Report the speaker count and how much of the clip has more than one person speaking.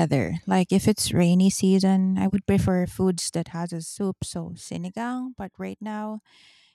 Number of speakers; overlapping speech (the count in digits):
1, no overlap